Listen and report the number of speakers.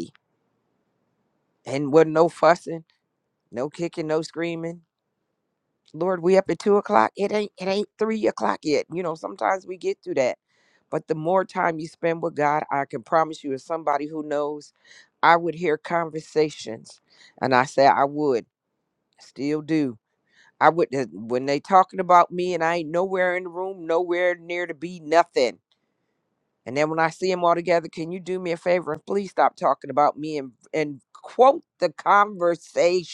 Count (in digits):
1